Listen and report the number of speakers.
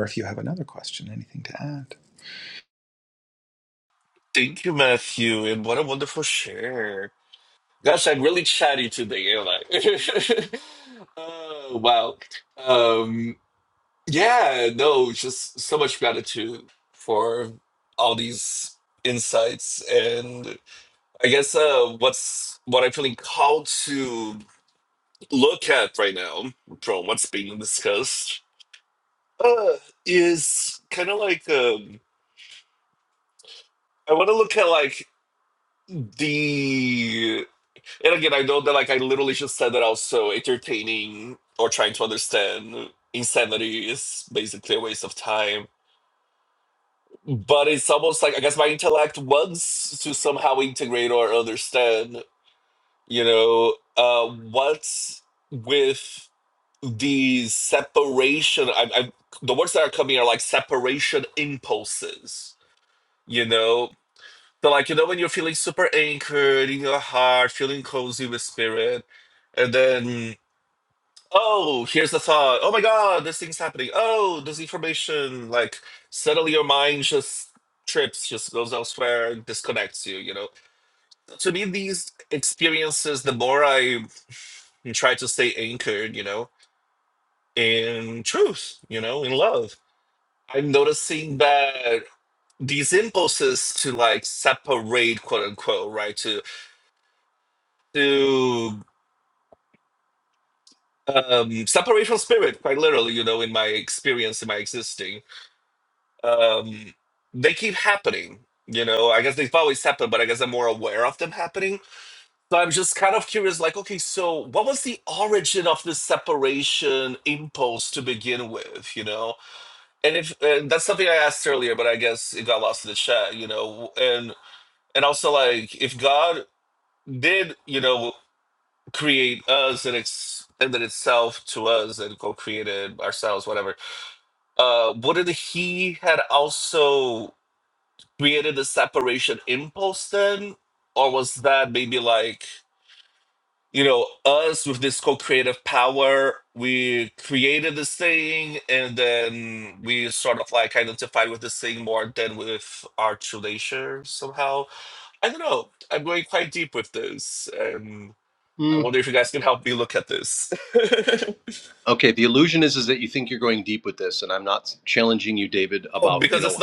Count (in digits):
3